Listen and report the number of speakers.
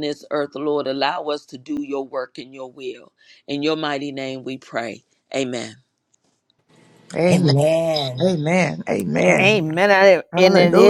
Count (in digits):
4